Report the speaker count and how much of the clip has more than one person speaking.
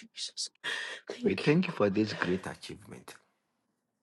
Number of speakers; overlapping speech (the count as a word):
two, about 24%